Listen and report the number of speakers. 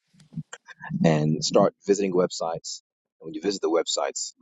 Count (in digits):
1